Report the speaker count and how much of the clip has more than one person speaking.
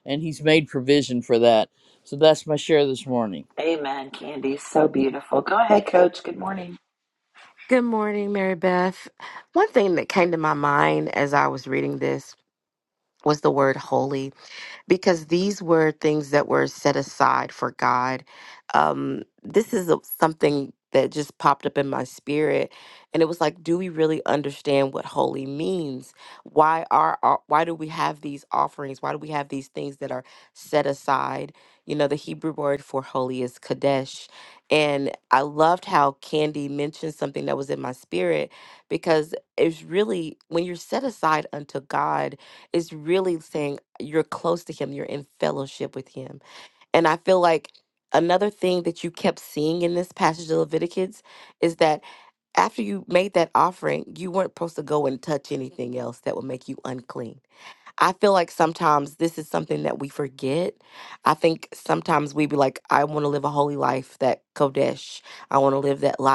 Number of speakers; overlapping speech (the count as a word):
three, no overlap